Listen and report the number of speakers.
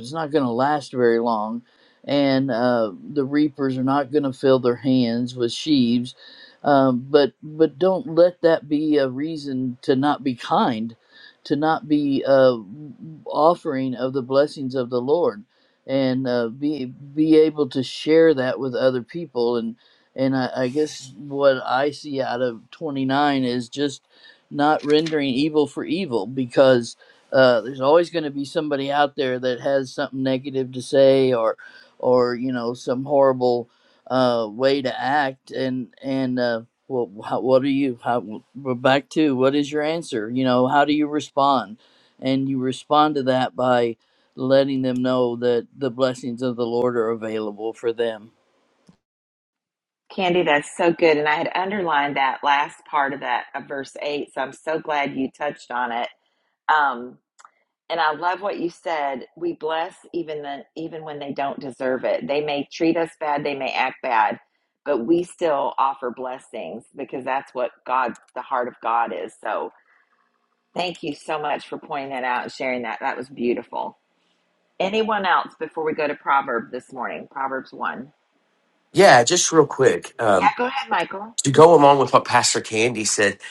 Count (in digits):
3